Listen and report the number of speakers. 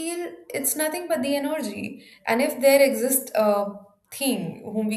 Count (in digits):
1